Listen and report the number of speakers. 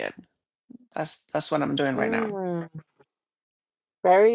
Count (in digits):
2